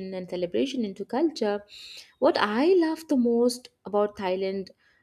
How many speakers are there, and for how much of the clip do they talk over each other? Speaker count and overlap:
one, no overlap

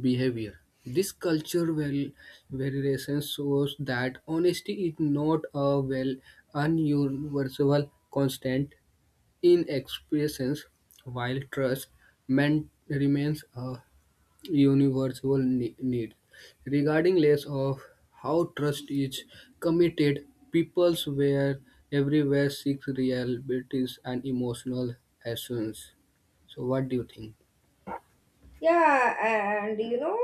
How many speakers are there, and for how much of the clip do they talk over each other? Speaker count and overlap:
two, no overlap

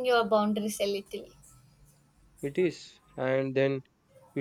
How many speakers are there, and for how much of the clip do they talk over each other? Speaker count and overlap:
two, no overlap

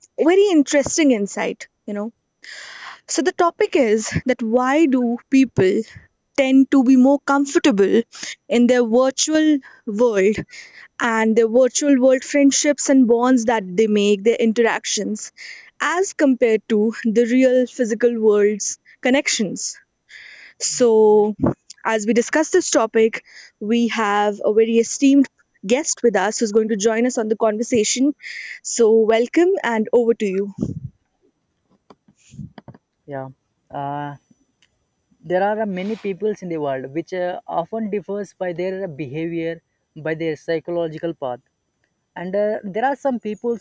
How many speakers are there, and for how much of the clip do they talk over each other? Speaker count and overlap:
two, no overlap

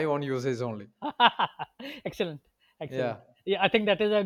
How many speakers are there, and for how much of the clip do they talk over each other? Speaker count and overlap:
two, about 5%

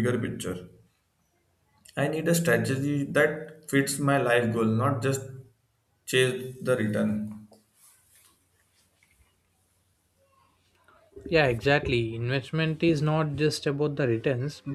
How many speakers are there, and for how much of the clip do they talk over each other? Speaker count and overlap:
two, no overlap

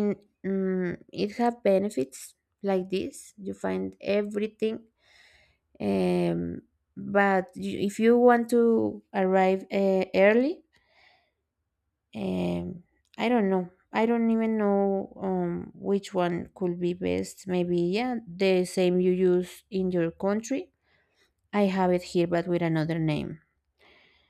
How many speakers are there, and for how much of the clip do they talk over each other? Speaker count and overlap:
one, no overlap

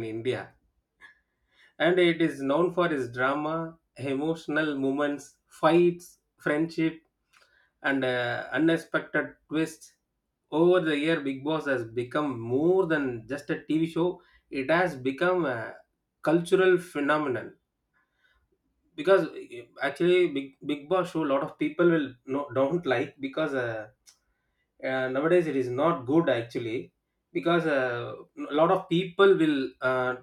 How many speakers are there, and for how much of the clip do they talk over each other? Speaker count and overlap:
one, no overlap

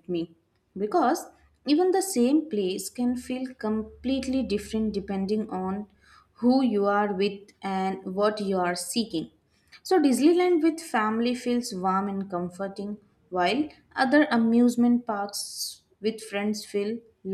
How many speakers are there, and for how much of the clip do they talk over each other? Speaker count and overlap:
one, no overlap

